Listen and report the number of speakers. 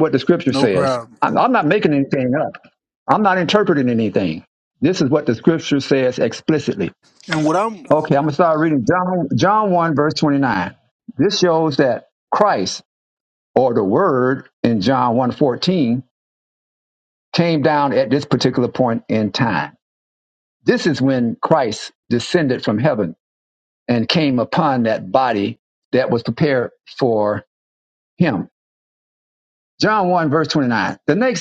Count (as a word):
two